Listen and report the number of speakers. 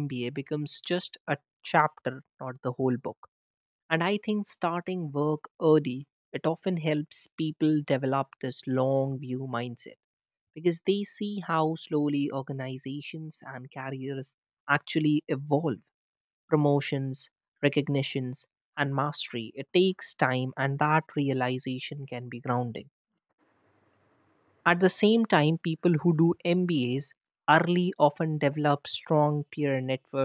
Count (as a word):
one